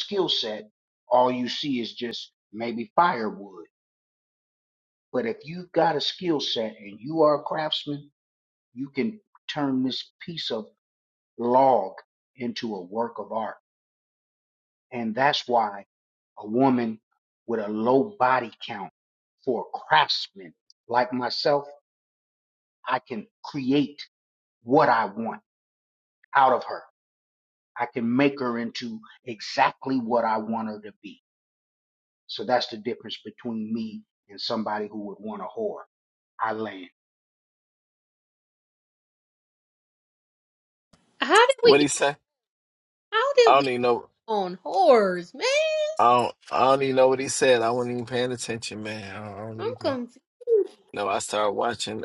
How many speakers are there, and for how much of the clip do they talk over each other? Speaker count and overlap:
three, about 1%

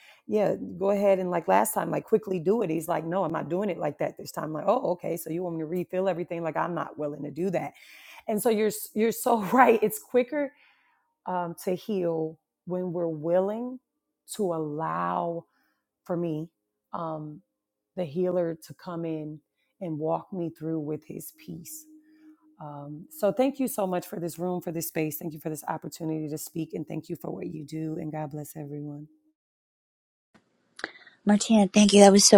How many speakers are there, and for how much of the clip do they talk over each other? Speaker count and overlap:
two, no overlap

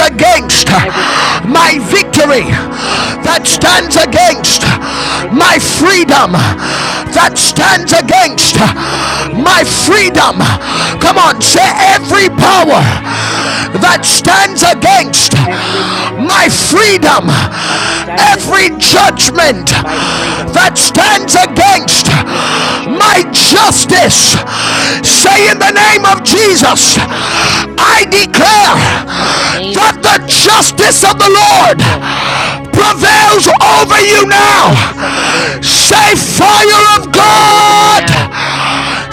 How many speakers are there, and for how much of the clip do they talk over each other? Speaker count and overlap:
two, about 19%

